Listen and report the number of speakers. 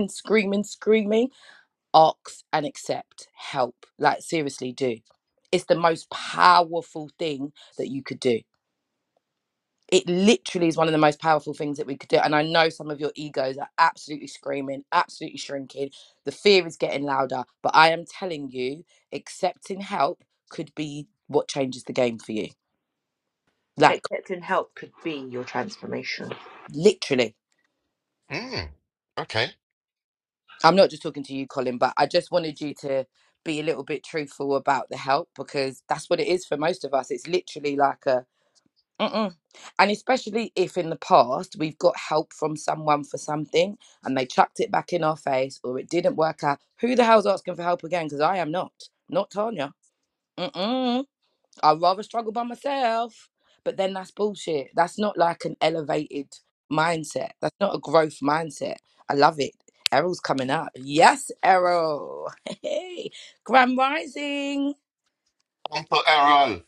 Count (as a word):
three